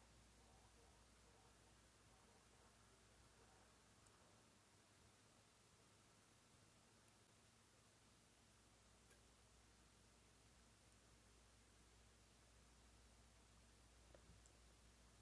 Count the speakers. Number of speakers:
zero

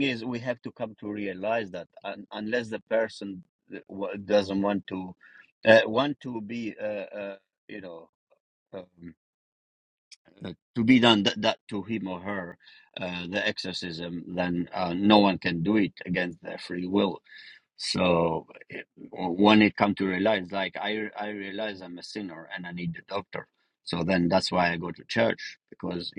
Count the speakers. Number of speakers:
one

